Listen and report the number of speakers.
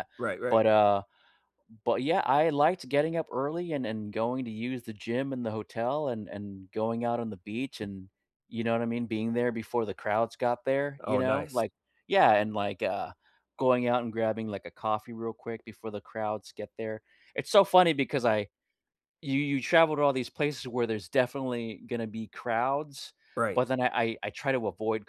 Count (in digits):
2